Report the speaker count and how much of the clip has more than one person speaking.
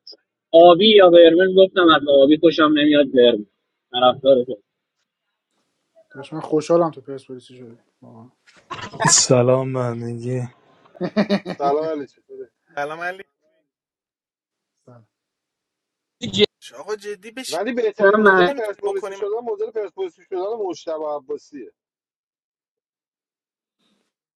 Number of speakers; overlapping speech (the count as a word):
five, about 5%